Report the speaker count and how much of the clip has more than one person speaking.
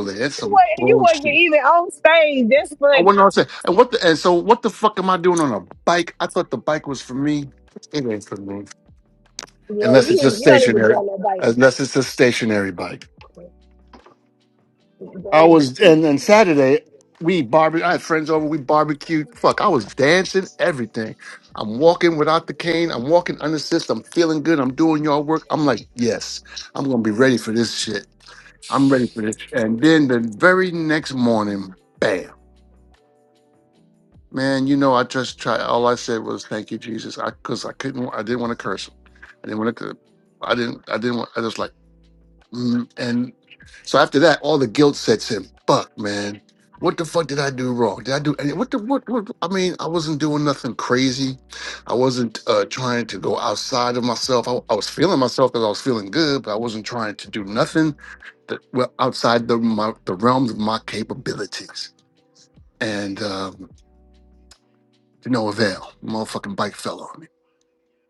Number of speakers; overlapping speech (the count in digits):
2, about 4%